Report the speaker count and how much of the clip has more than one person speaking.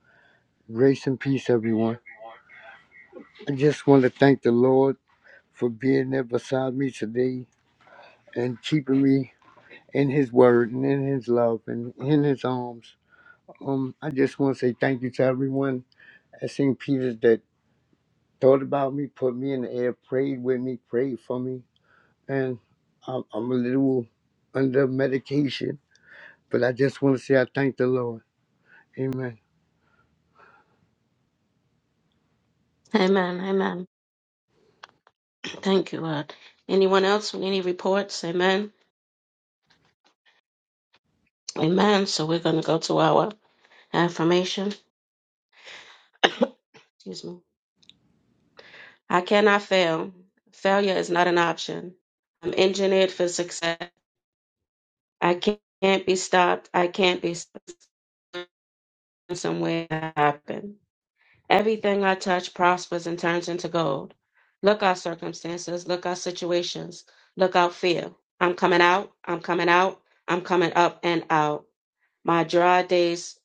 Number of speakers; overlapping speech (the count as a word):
two, no overlap